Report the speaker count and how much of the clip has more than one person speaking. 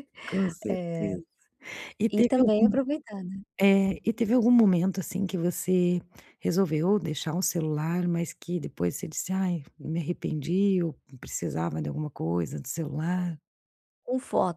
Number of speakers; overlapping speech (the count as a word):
two, about 8%